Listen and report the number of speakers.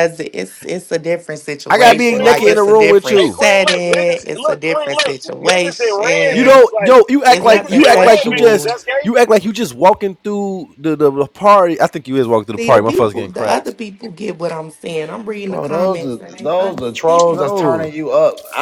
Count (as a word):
four